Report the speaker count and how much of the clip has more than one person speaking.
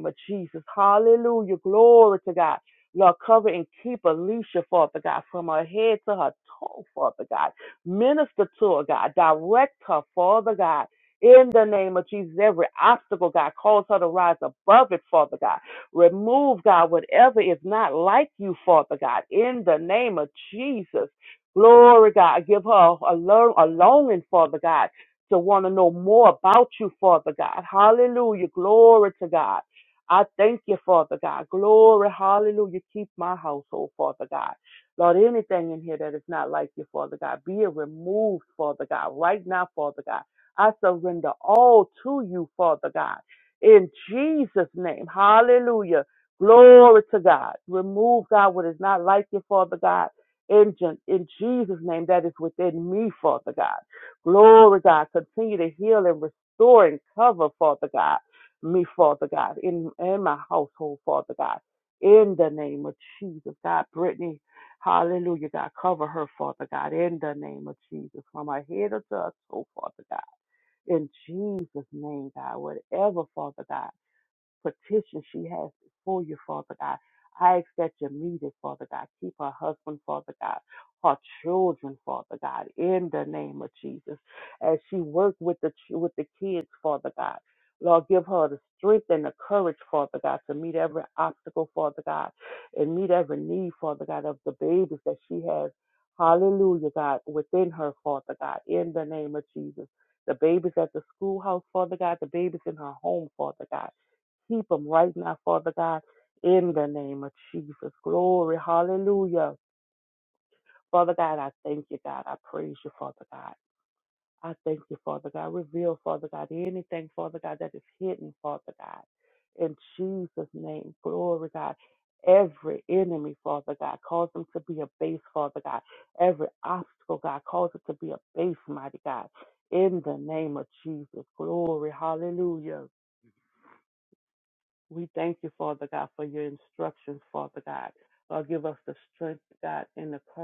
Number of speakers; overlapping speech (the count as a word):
one, no overlap